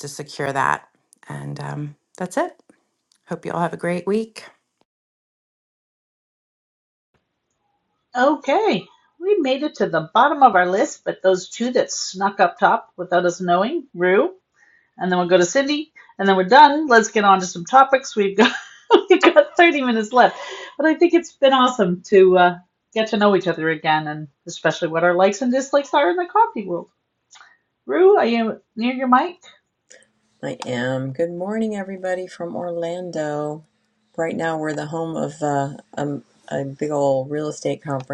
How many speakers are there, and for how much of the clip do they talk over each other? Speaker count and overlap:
3, no overlap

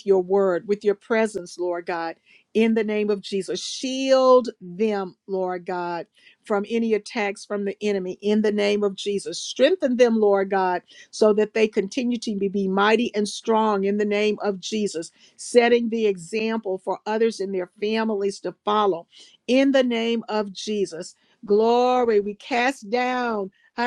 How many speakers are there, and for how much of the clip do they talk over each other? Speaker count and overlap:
1, no overlap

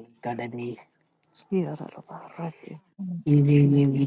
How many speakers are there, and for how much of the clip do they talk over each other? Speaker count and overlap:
2, no overlap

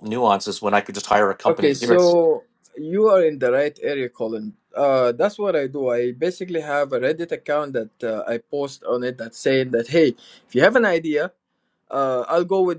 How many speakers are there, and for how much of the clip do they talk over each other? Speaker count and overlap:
2, about 6%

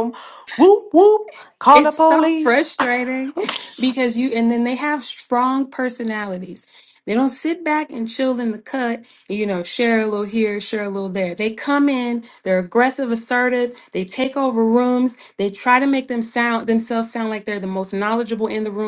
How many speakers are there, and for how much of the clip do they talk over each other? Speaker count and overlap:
2, about 6%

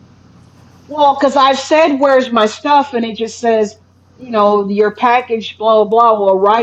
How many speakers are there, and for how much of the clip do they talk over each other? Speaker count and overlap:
1, no overlap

